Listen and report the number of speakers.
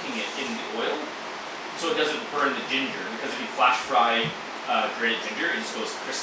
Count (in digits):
1